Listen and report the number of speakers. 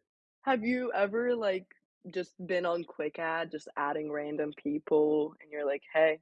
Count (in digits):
1